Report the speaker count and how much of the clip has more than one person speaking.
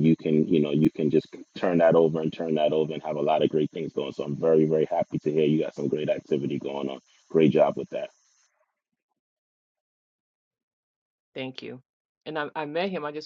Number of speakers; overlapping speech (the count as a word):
two, no overlap